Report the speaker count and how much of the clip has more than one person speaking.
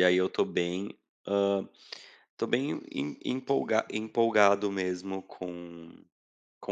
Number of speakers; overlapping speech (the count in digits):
1, no overlap